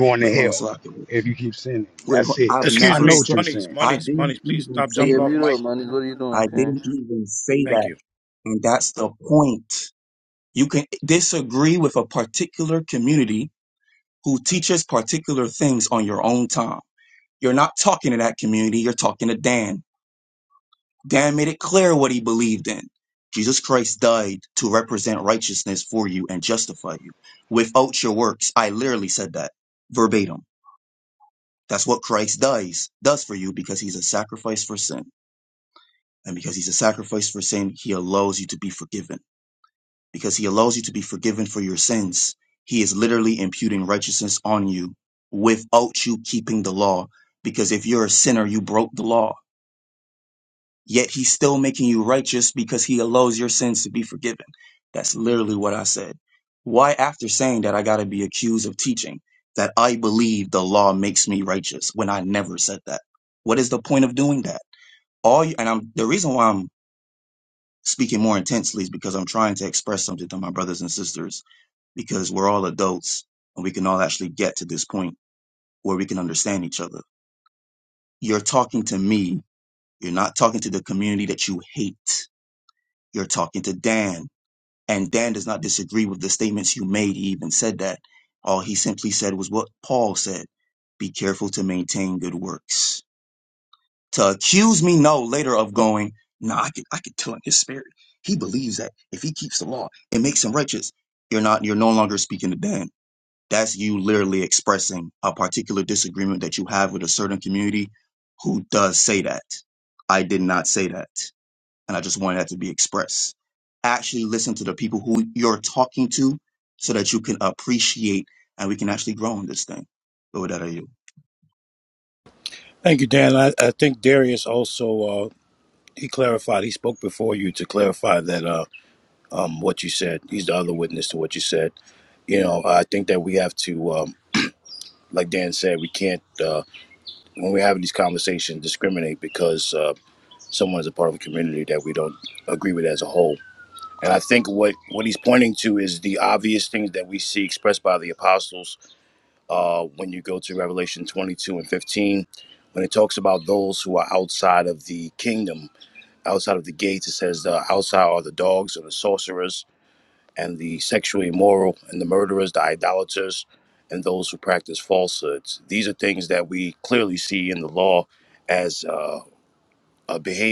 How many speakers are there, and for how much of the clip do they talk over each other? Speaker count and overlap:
4, about 3%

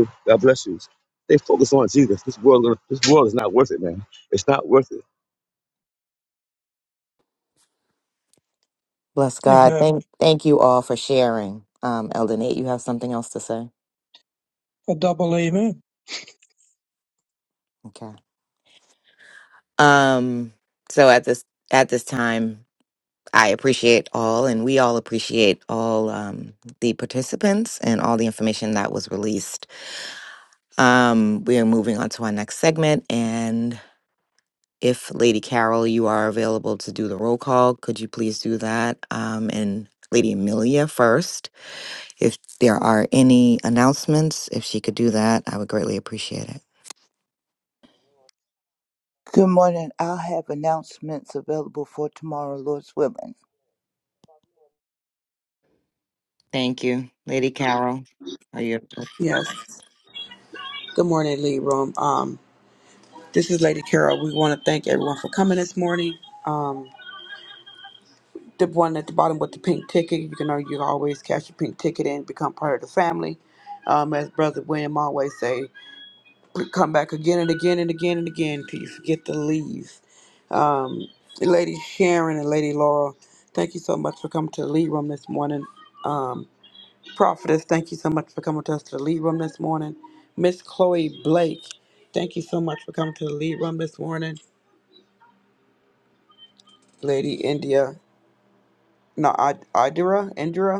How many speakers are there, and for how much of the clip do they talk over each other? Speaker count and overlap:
5, under 1%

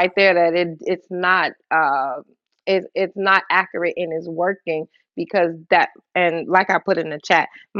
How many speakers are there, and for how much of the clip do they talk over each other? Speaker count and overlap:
1, no overlap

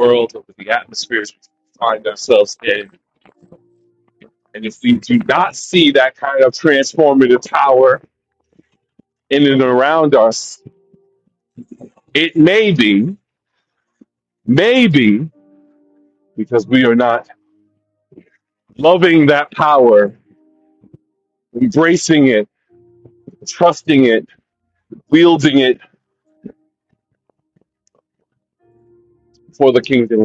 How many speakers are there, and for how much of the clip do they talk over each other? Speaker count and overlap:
1, no overlap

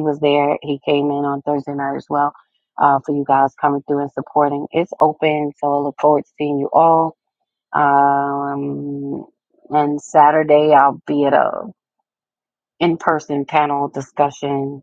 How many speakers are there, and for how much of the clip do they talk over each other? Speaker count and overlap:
1, no overlap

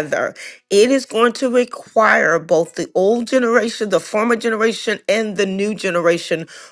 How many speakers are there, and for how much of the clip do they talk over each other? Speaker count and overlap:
1, no overlap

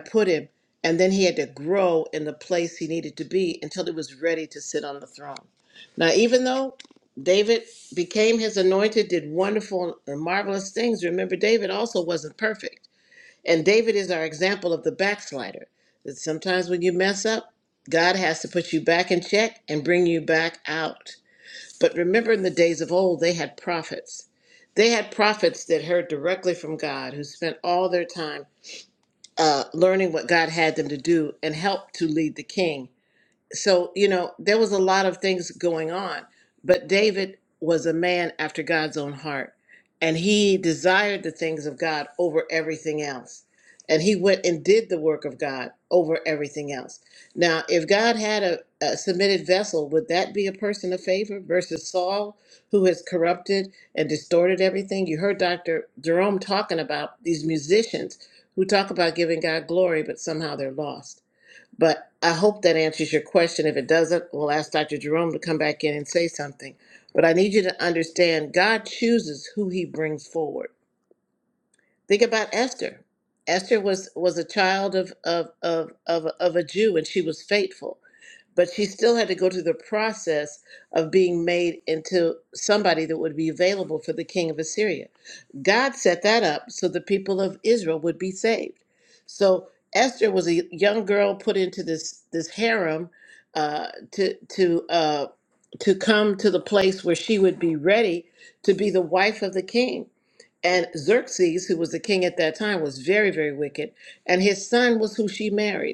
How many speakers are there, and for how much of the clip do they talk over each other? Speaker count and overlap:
1, no overlap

